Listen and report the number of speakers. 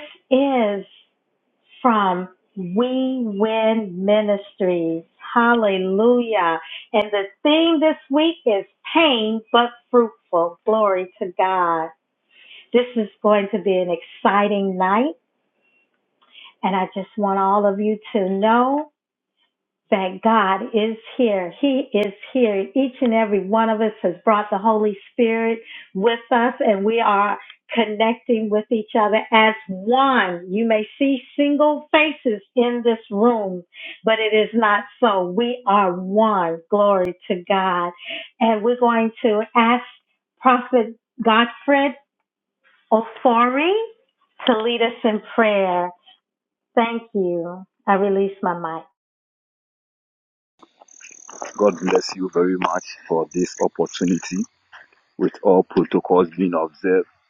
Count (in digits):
2